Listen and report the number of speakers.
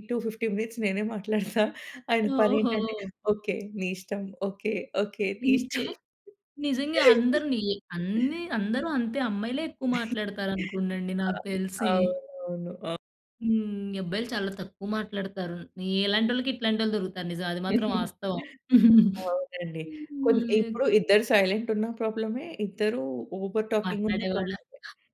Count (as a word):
two